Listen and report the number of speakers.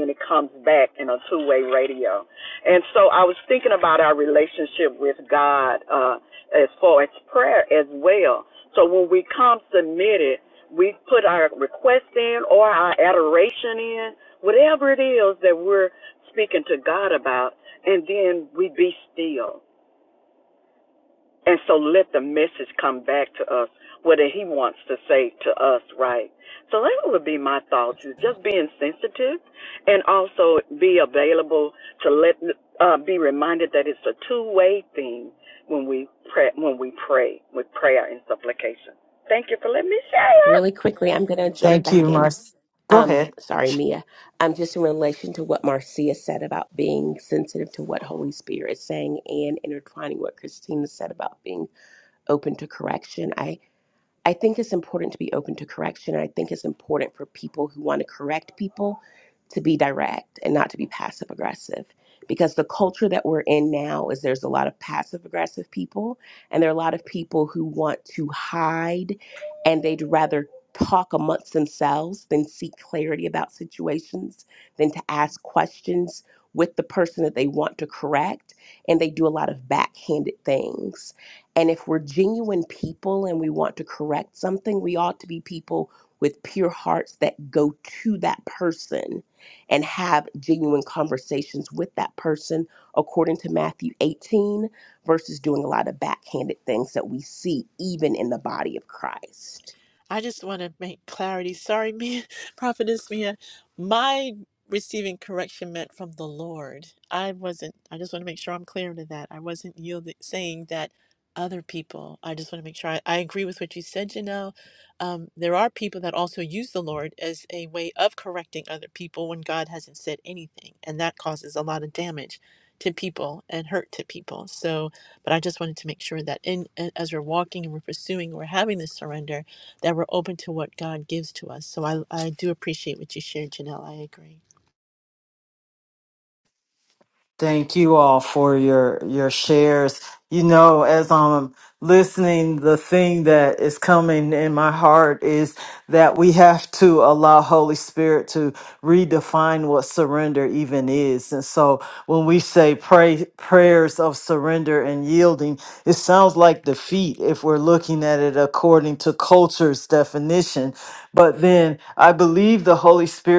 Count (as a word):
four